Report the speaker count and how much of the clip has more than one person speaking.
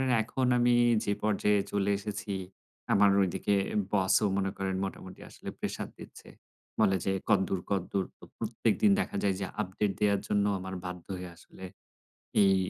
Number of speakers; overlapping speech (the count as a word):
one, no overlap